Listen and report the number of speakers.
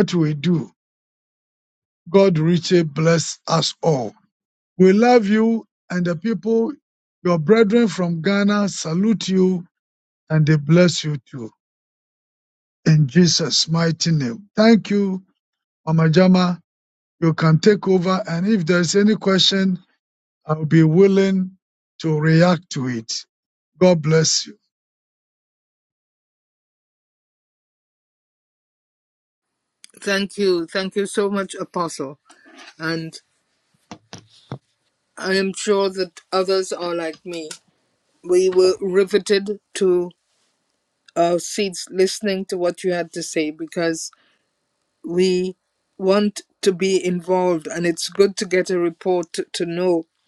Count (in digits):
2